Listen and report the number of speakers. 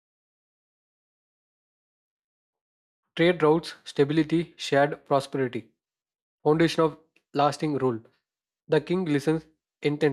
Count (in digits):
1